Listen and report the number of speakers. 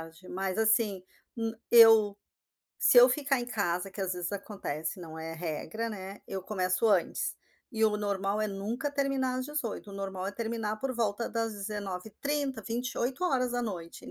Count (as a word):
one